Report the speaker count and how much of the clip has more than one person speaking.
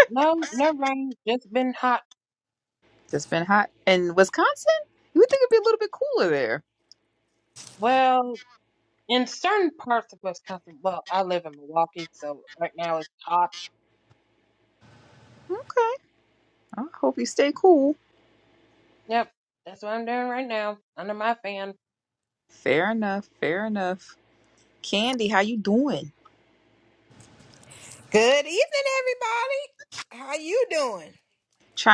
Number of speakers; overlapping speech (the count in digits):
3, no overlap